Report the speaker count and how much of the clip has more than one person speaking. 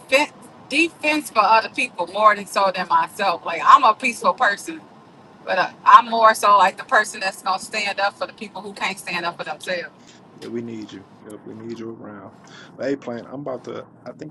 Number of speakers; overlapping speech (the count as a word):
two, no overlap